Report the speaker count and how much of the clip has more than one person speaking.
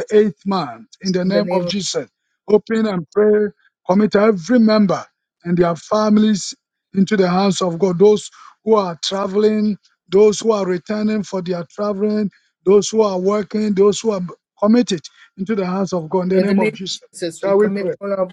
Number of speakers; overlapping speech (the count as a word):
two, about 8%